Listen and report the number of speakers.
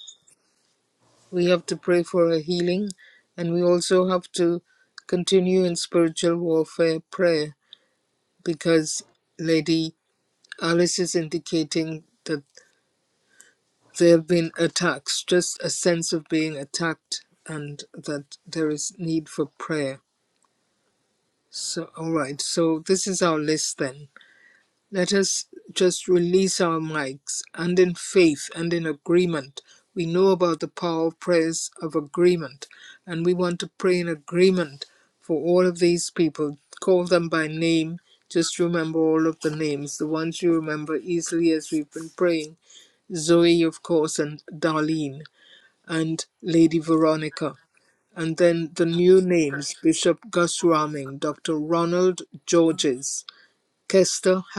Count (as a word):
one